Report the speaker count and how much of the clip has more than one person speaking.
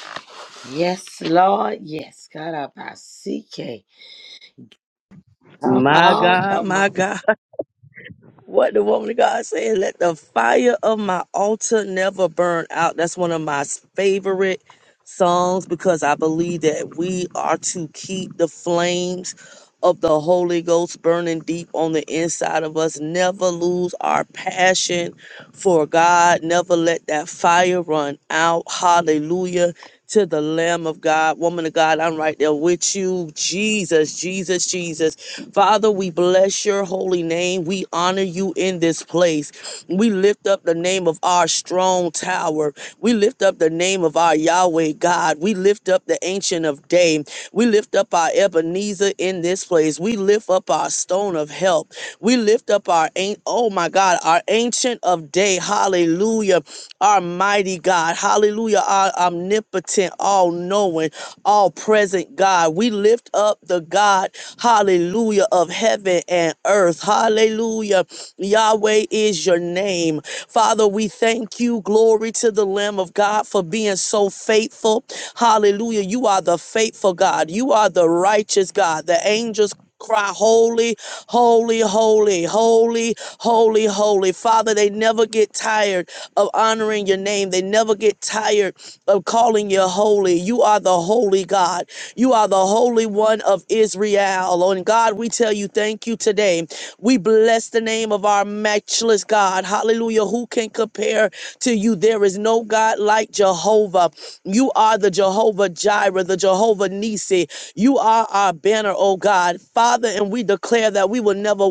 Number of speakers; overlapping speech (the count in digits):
2, about 1%